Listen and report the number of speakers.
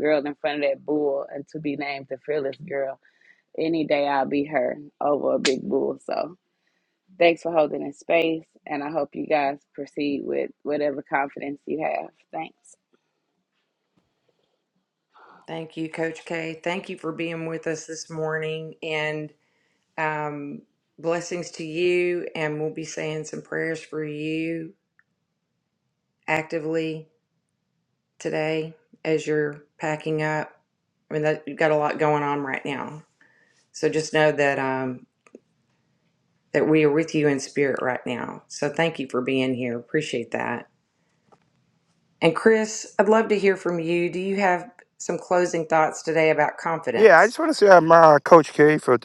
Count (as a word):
three